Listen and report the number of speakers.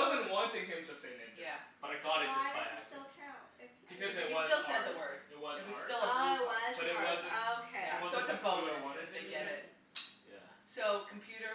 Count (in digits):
4